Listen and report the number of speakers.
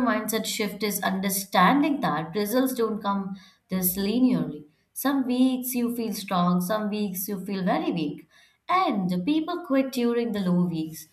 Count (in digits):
1